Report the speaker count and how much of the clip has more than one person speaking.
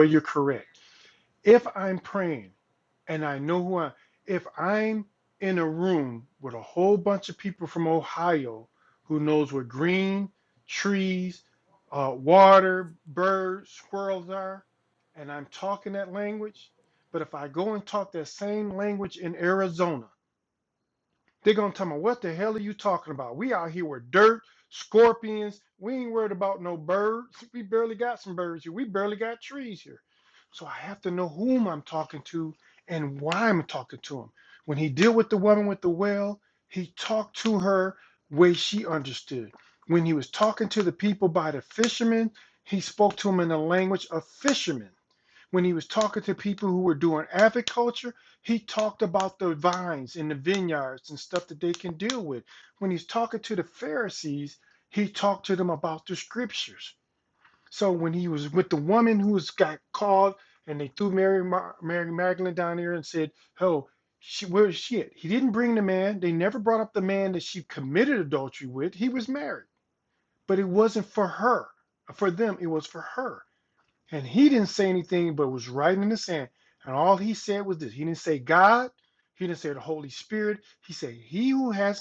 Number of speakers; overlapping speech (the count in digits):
1, no overlap